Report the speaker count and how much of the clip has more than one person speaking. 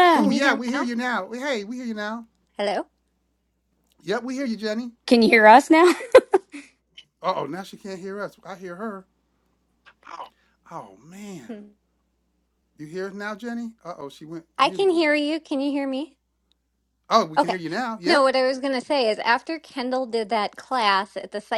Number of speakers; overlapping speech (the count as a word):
three, about 8%